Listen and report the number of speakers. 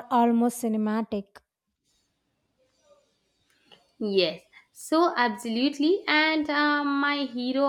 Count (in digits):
2